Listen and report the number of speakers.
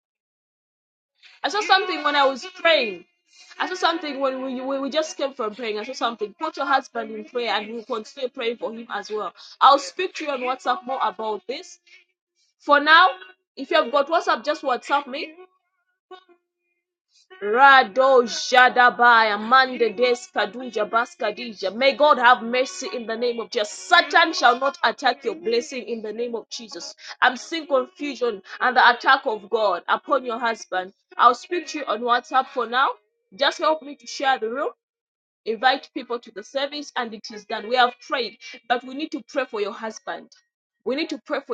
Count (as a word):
one